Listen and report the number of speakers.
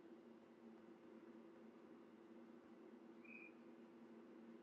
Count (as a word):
zero